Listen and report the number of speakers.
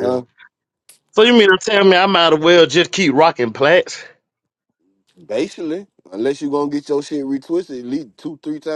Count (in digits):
2